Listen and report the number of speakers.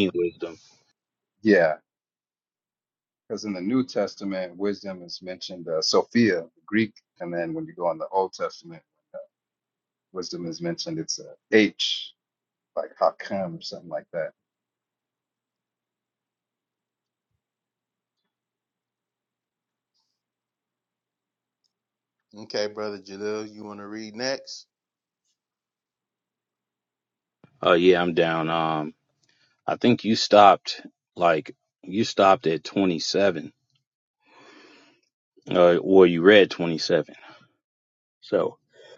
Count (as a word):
three